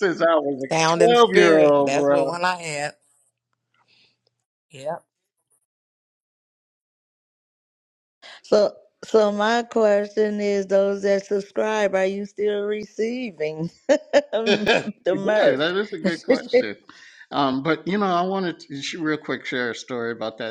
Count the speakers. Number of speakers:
3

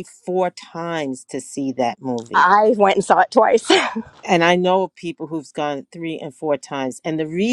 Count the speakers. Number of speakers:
2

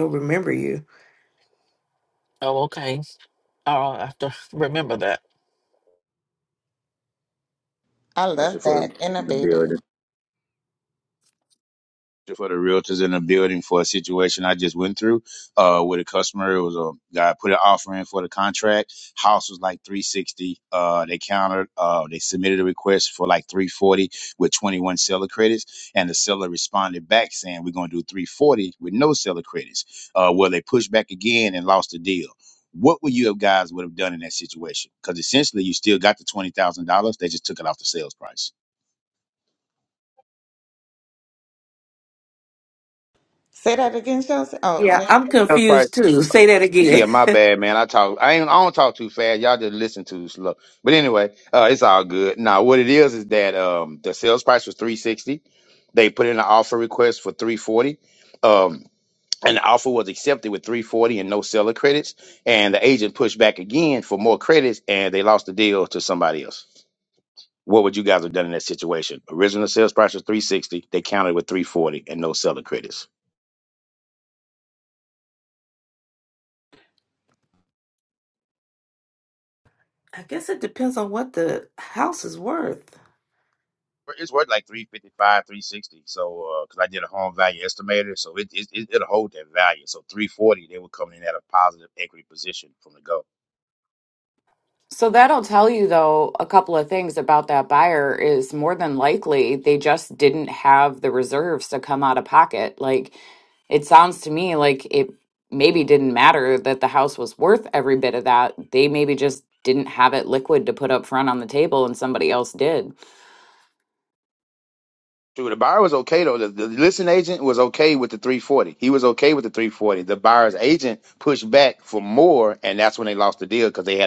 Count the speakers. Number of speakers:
5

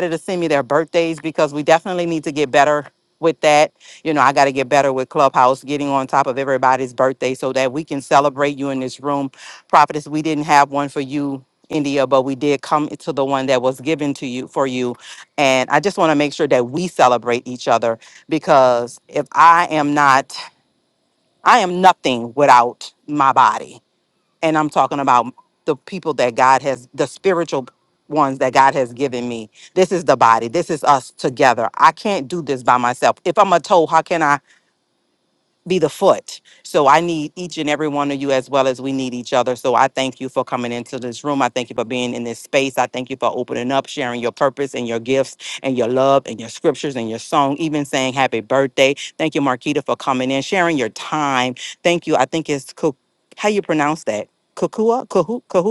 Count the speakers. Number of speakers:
1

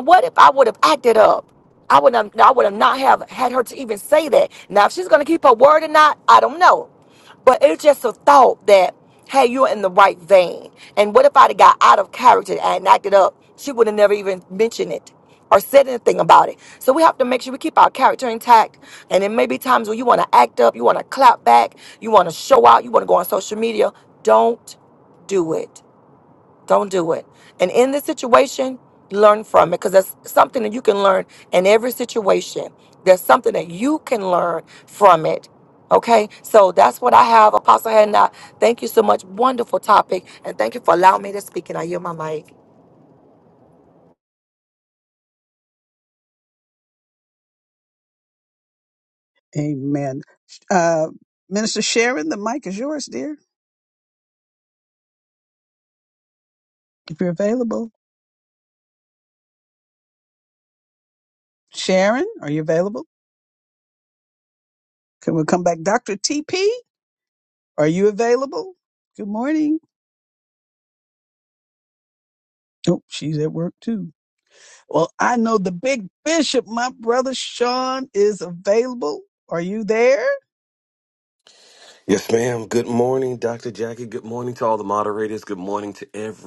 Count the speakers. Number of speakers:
3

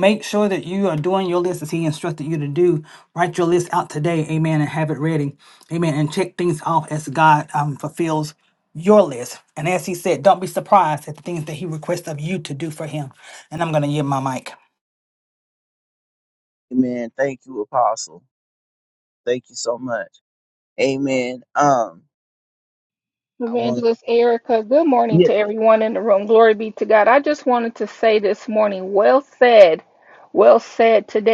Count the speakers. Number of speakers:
3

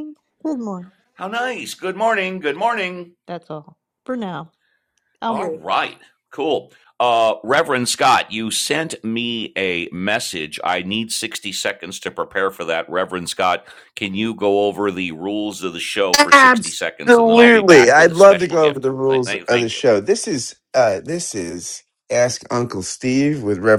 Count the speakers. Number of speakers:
3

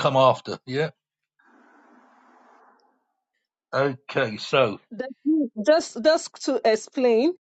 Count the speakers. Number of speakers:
2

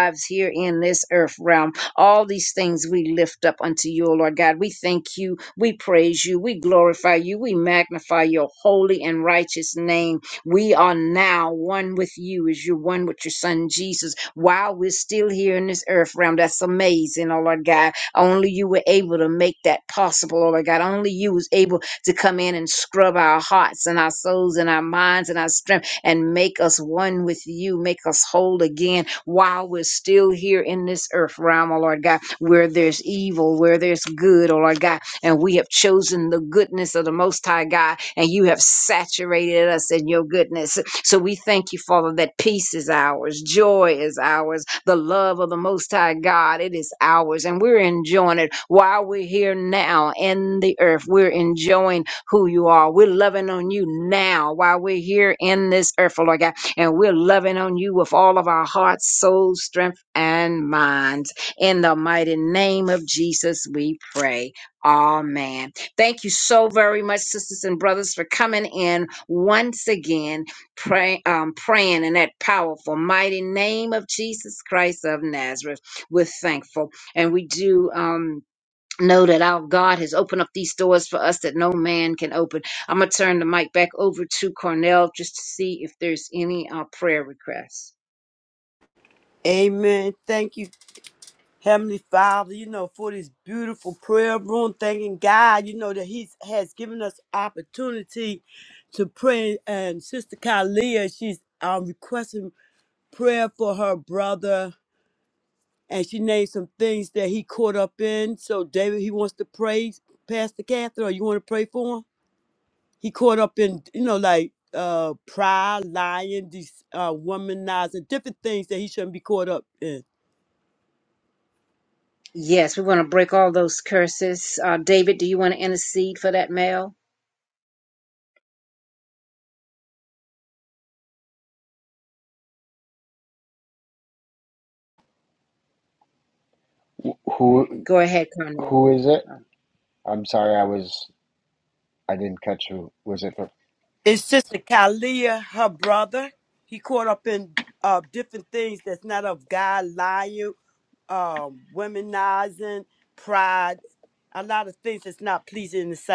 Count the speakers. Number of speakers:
3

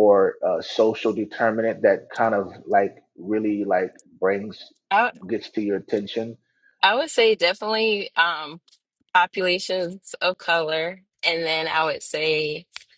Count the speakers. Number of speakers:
2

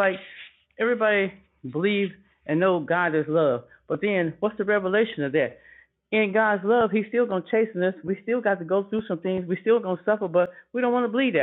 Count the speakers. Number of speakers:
1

